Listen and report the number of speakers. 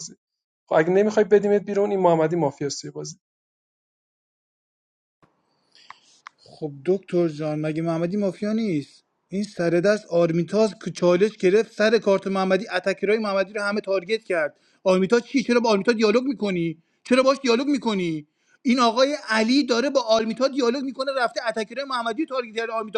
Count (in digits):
2